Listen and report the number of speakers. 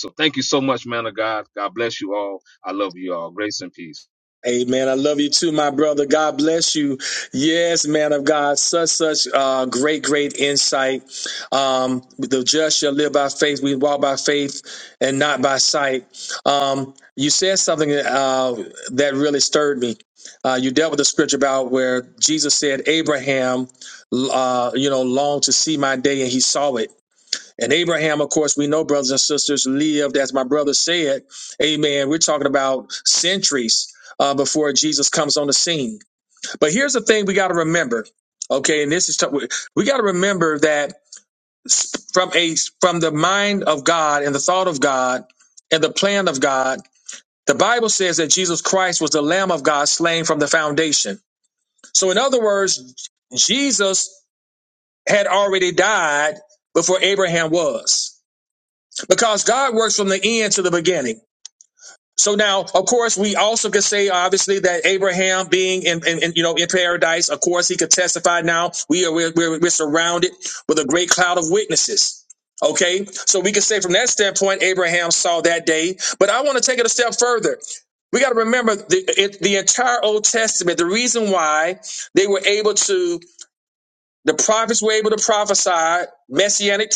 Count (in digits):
2